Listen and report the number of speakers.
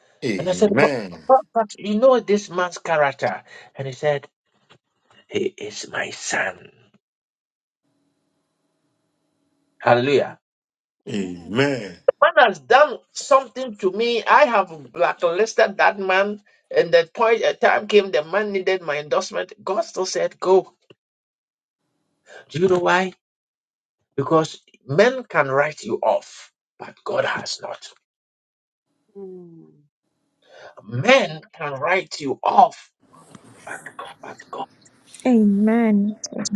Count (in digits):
4